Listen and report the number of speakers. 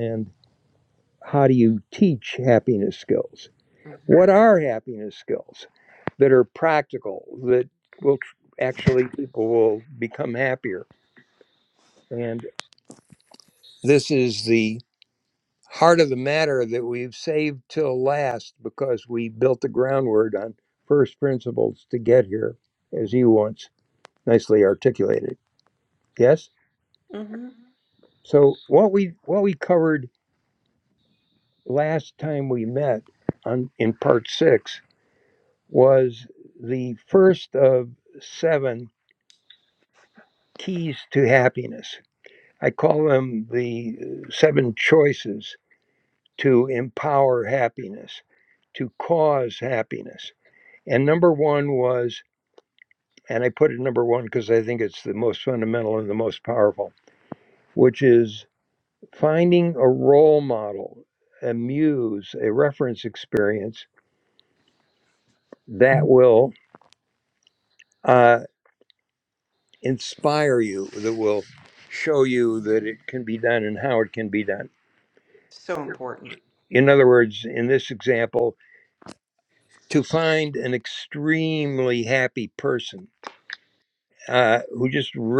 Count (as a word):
two